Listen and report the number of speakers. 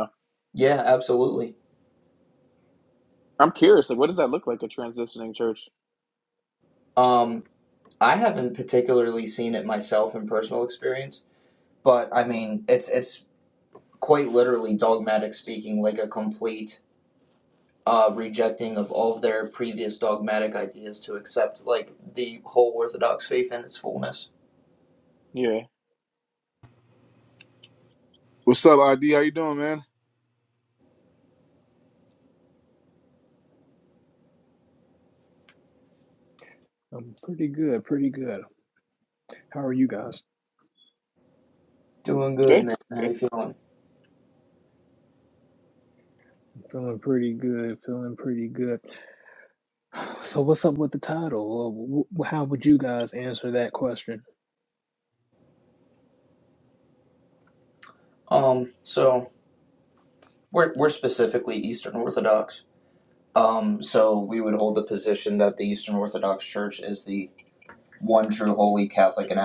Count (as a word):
four